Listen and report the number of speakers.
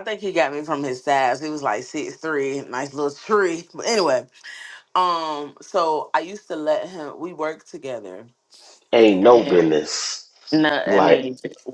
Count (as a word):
two